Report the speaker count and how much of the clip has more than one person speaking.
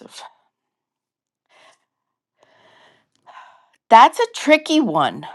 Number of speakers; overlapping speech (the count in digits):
1, no overlap